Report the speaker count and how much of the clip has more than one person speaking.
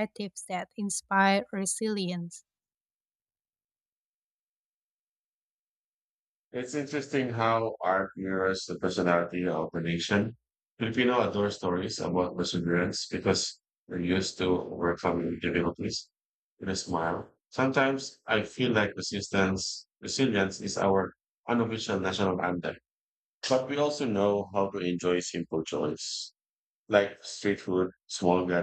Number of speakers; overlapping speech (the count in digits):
2, no overlap